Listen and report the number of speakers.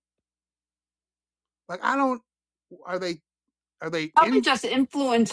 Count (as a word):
two